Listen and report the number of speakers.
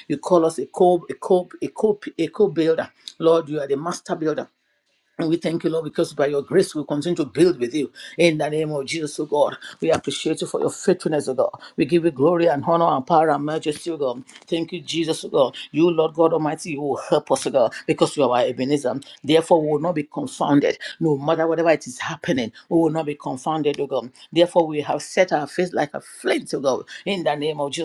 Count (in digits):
1